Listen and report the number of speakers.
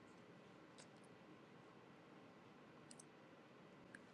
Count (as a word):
zero